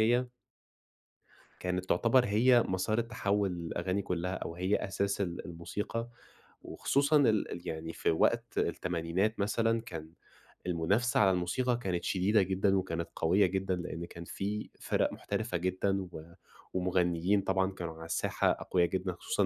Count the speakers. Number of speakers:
one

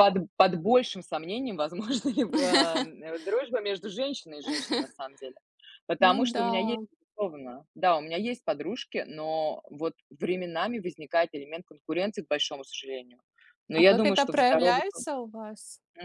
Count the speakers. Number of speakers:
two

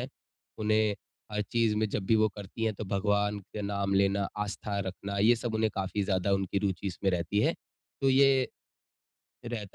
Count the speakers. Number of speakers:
one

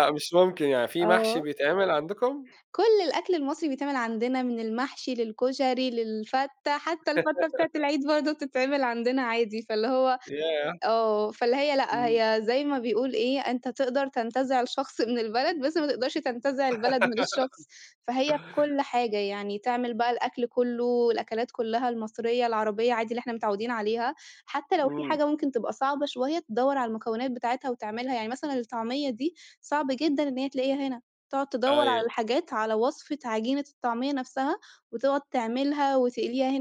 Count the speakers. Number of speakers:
two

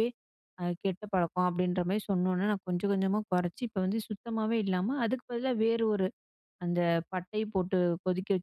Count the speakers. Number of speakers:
one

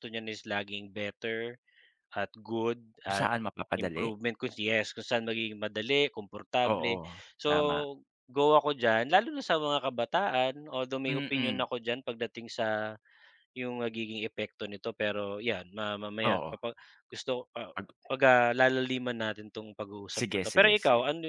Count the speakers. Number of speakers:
two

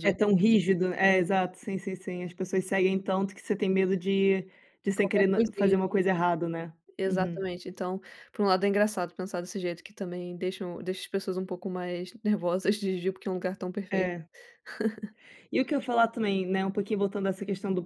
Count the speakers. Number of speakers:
two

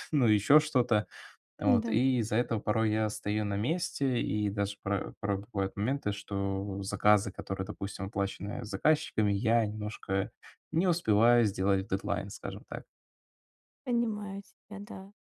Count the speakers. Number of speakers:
two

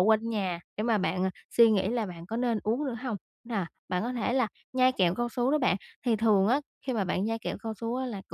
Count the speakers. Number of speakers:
one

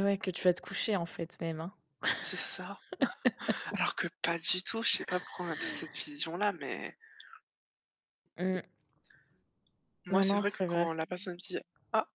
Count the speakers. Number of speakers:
two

